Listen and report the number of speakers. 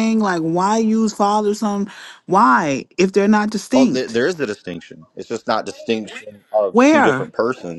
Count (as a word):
two